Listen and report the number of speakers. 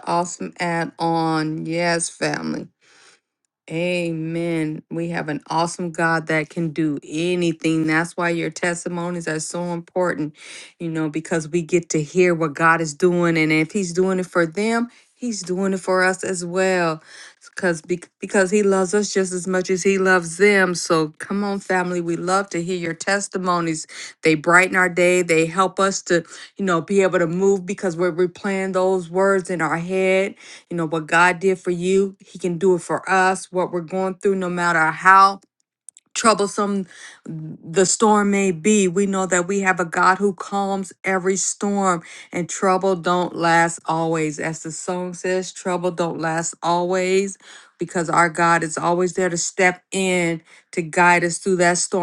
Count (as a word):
one